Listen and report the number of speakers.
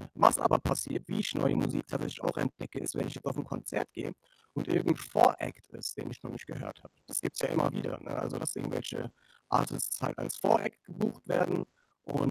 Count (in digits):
1